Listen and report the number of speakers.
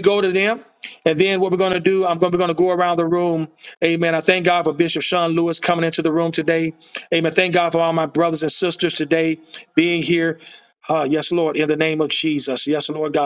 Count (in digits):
1